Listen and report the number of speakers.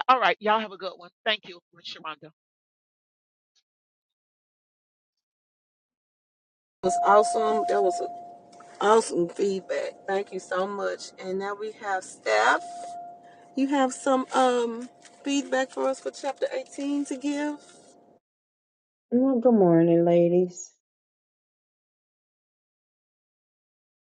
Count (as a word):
three